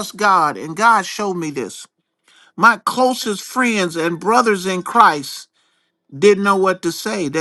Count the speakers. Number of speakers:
1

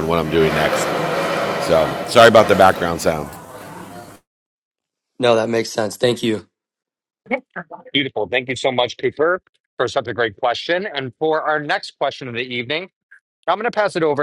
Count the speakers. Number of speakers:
3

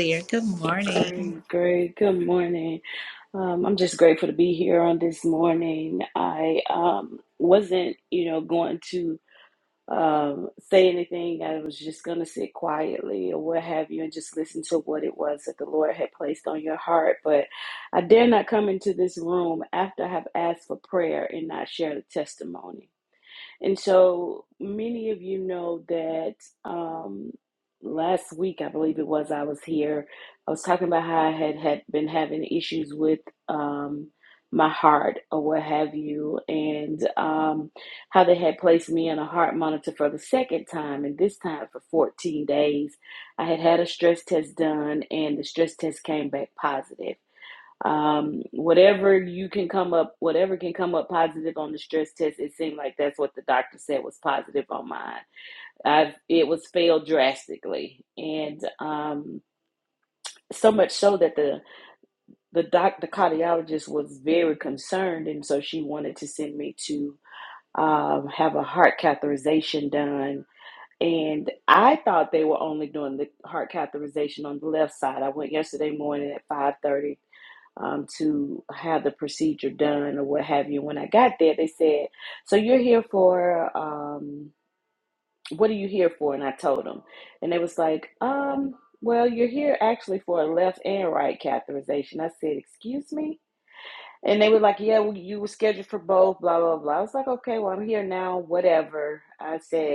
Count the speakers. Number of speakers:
2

